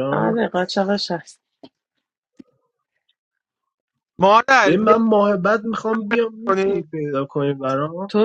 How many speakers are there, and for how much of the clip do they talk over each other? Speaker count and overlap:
3, about 11%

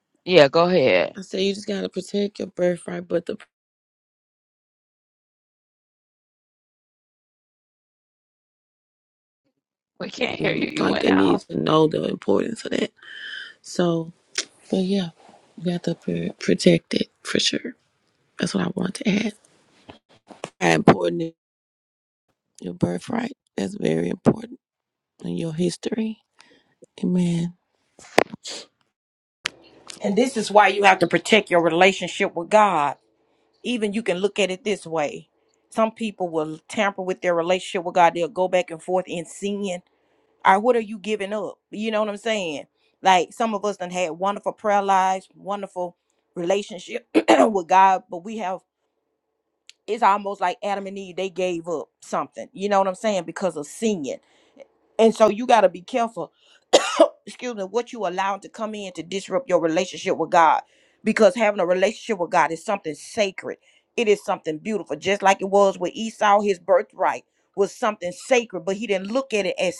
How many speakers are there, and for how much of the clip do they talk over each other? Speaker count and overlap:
3, about 1%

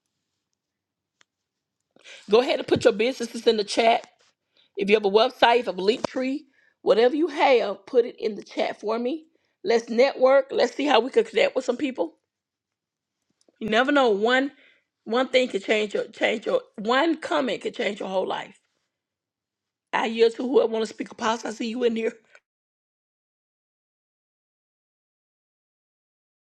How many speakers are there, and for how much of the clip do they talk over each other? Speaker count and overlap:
1, no overlap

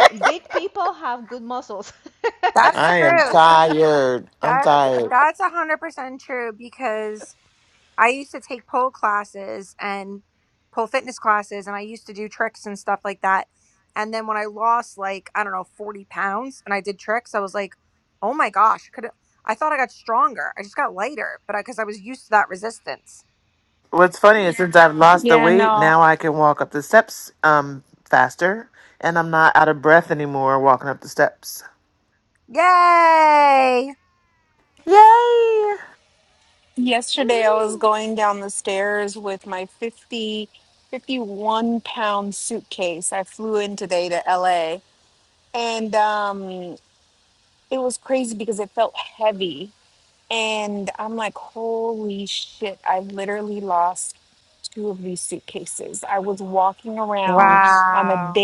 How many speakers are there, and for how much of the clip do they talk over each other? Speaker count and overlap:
4, about 6%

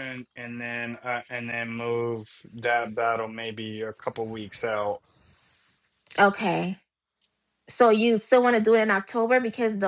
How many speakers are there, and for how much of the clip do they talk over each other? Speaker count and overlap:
2, no overlap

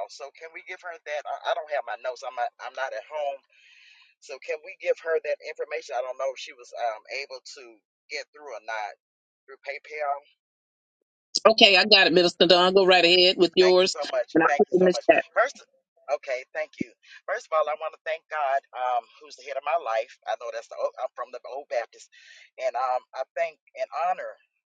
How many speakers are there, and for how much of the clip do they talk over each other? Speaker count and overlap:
2, about 4%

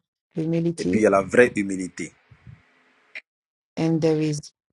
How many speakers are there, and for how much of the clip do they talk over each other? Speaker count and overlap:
2, about 5%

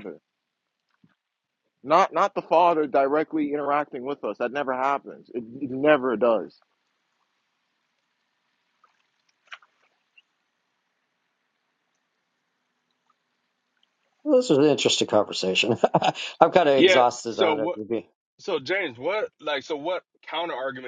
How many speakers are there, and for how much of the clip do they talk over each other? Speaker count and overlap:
3, about 3%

